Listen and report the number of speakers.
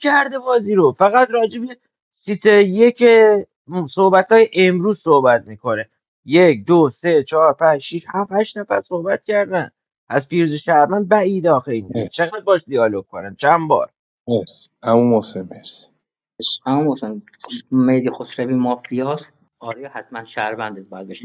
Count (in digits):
3